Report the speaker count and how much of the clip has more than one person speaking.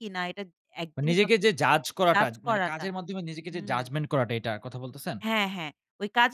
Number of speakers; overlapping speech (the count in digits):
2, about 21%